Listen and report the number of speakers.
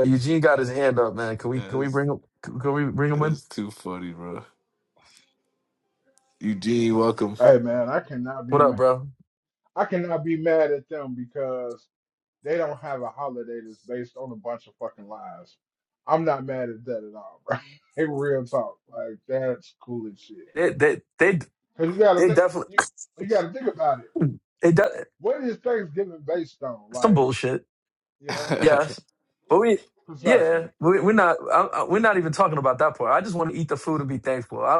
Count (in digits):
3